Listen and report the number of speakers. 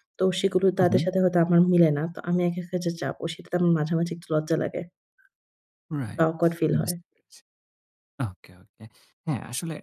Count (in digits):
2